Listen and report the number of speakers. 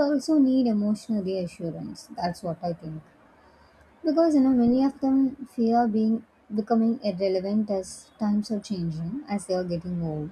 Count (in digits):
1